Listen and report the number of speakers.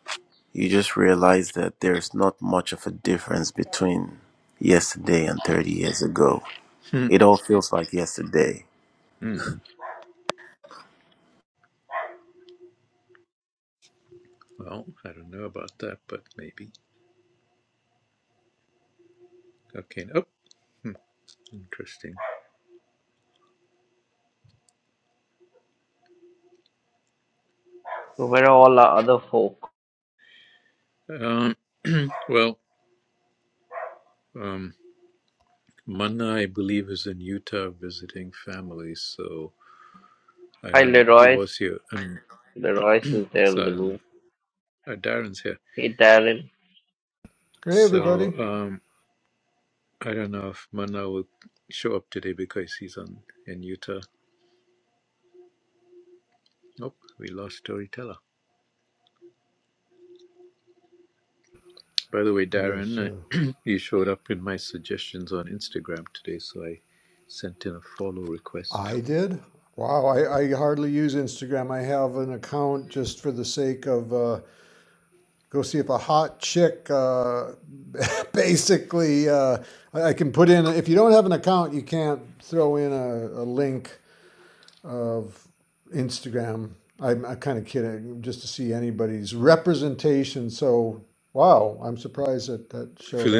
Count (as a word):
four